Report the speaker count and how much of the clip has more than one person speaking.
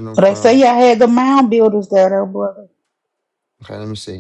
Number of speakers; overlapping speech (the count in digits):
2, about 10%